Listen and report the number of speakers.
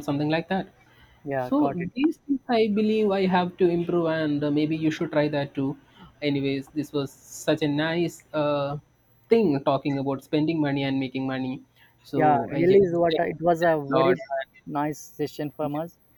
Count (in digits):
2